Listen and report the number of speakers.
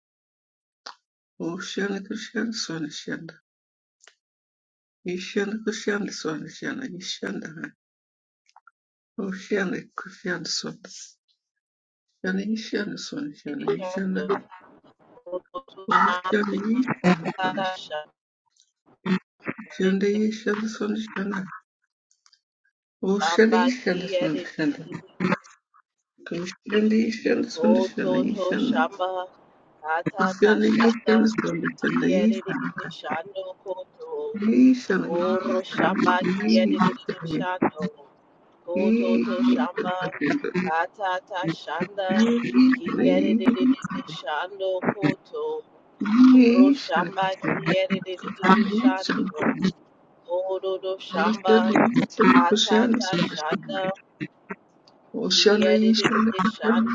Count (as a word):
two